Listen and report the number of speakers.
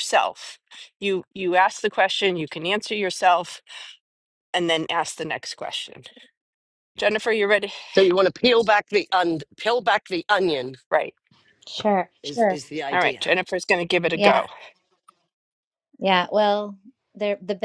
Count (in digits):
3